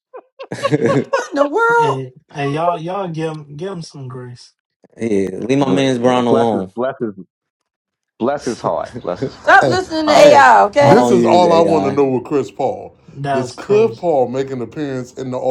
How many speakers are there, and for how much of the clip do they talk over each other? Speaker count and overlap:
5, about 27%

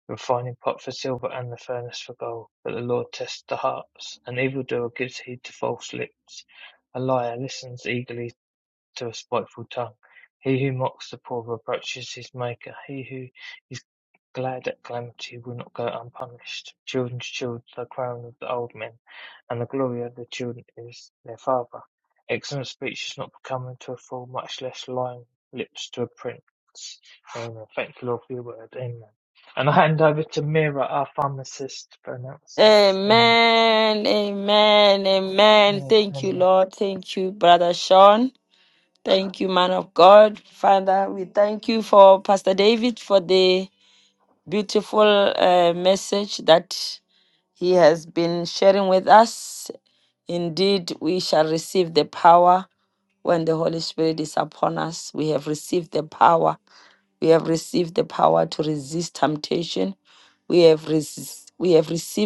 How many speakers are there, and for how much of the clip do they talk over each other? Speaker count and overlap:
2, about 1%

